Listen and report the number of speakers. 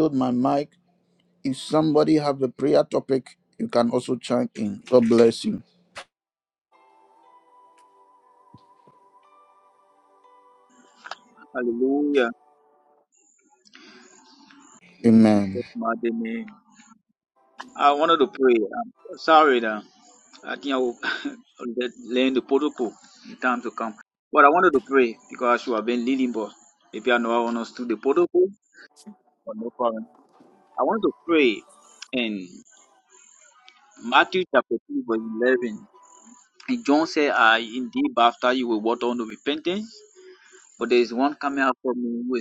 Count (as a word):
two